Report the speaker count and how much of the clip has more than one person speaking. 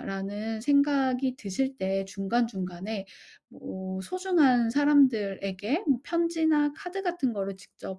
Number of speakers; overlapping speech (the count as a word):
one, no overlap